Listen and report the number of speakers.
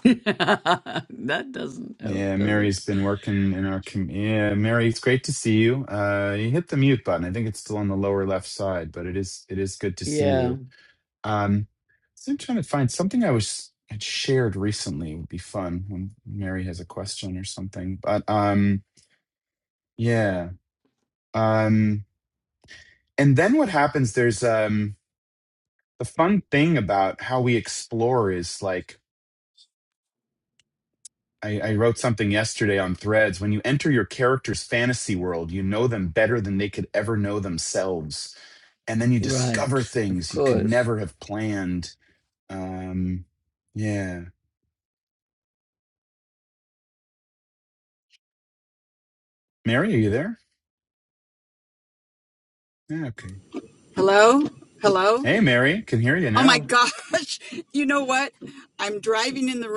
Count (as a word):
three